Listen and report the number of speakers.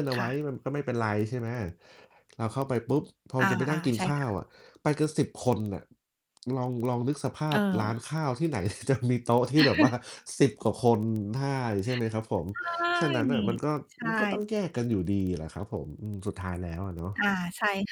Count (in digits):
2